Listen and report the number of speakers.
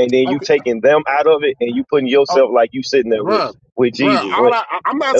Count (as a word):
two